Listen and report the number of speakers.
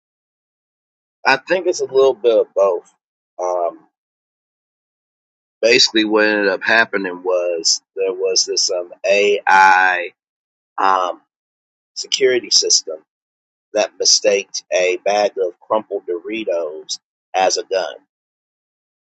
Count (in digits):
1